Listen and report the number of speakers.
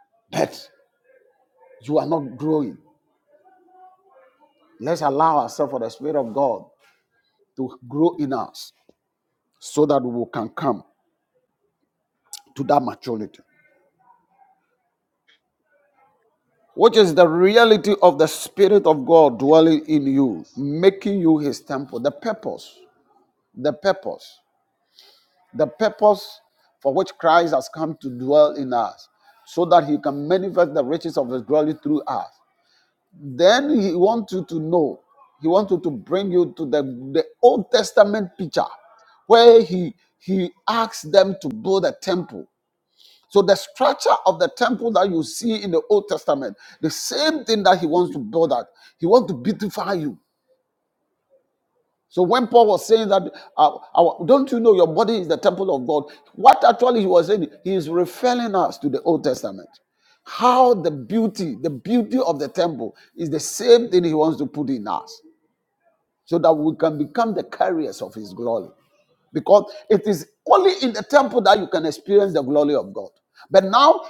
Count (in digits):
1